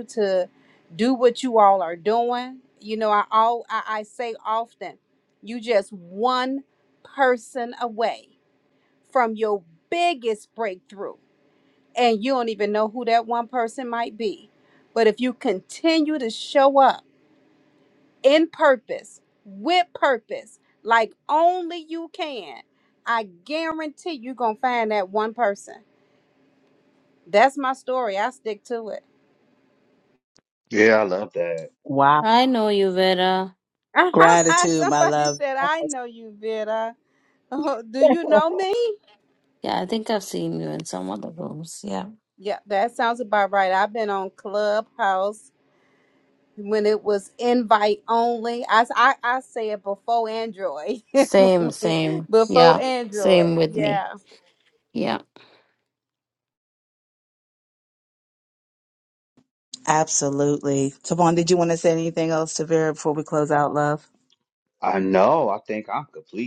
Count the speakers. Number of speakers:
4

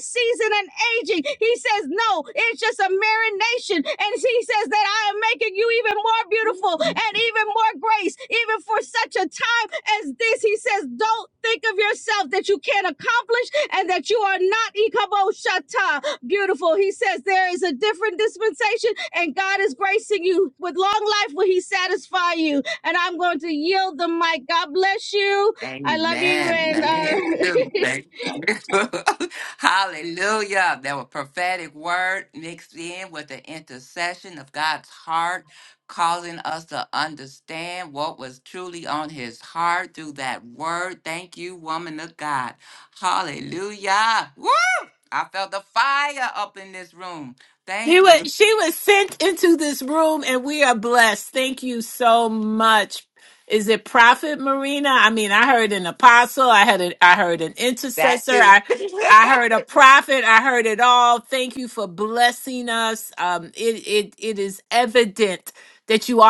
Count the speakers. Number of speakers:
3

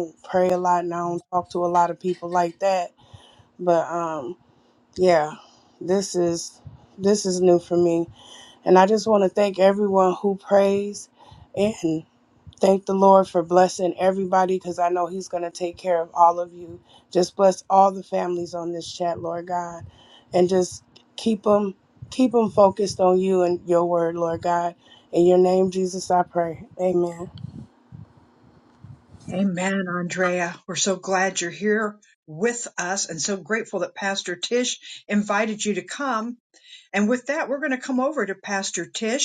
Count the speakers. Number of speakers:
2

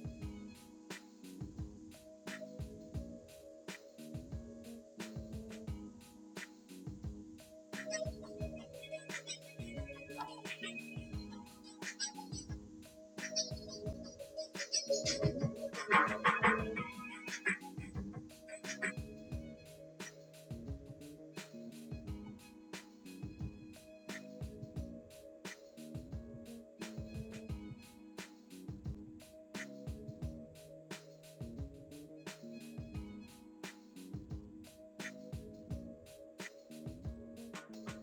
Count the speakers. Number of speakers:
0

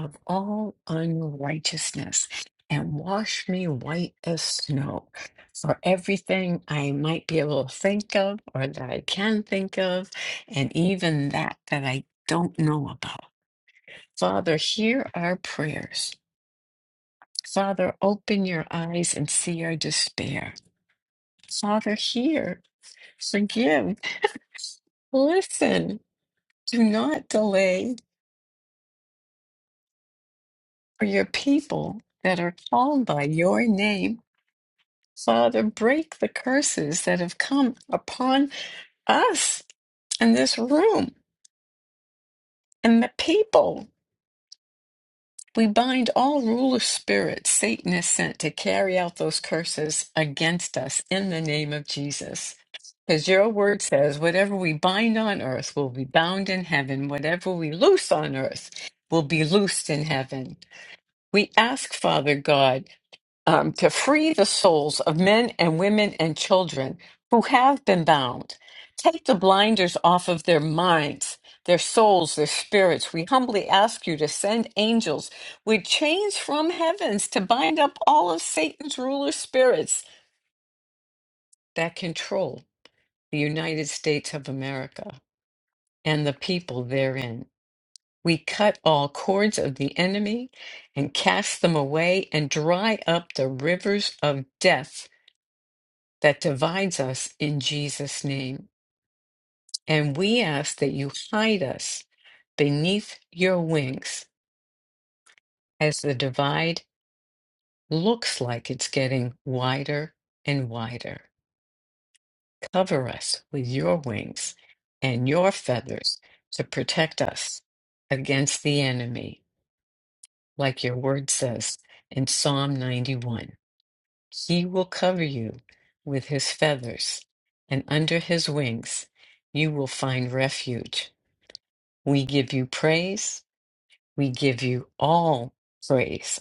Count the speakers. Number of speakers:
1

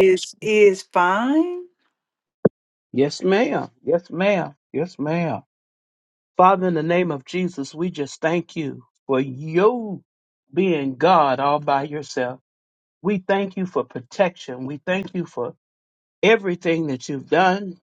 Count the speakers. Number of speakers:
2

